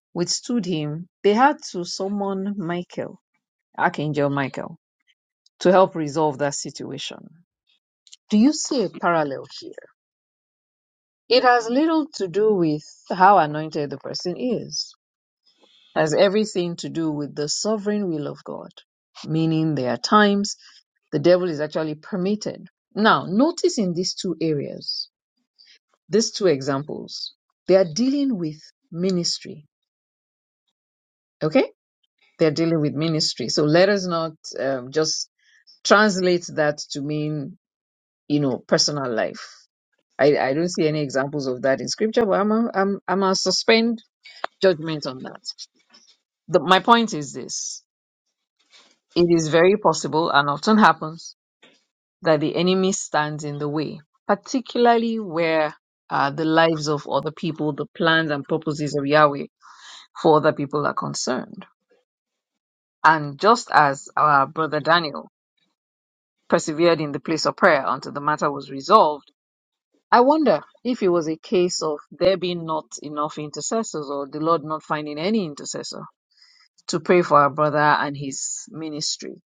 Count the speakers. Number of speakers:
1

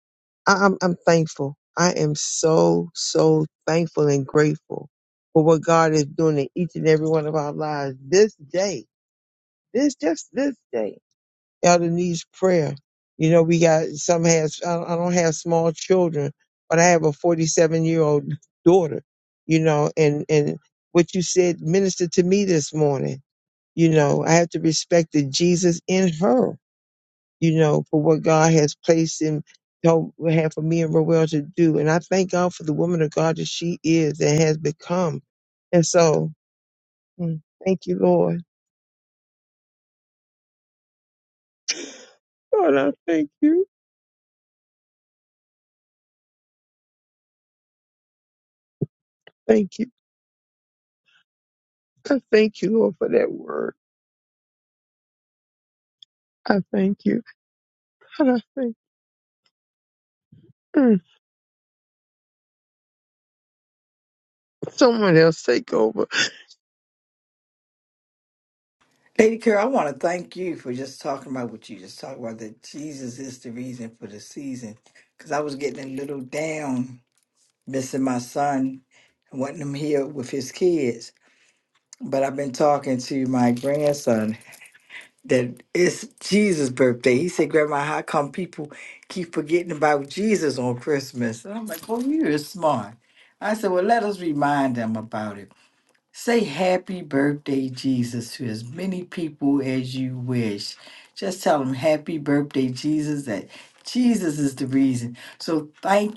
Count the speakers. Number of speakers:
2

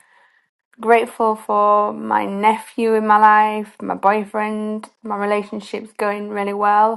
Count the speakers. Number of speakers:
1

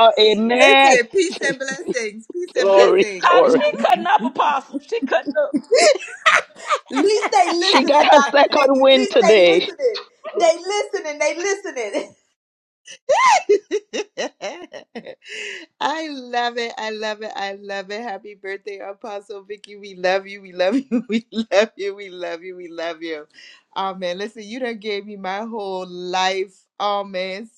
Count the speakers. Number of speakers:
4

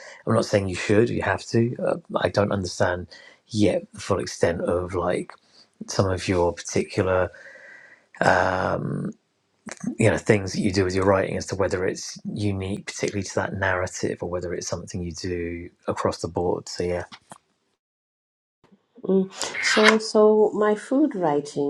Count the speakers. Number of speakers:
2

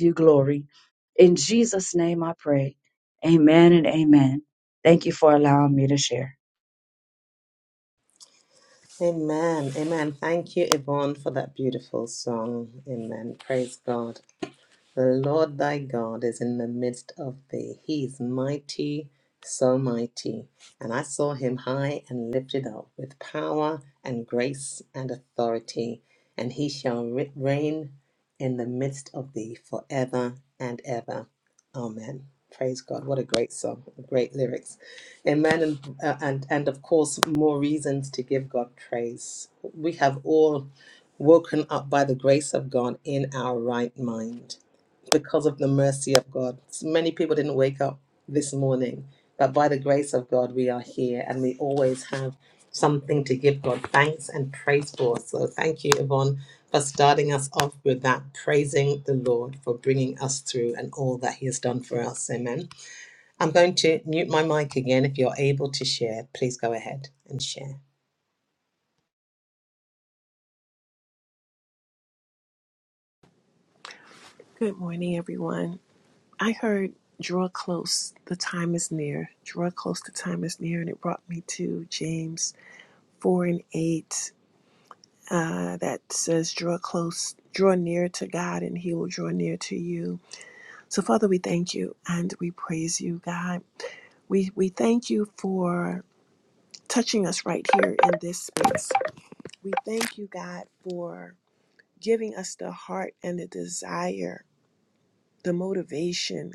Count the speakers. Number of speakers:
3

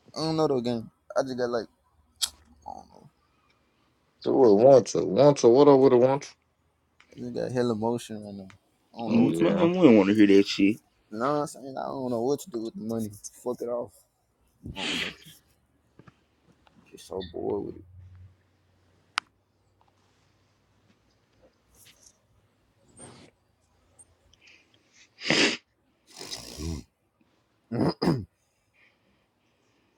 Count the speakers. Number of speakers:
3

